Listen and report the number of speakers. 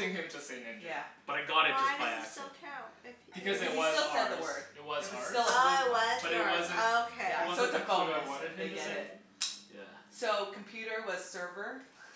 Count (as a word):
four